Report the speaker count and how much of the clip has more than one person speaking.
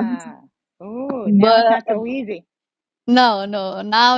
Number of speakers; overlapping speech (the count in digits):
2, about 14%